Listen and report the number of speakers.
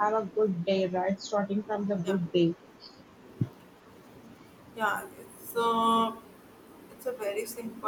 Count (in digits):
2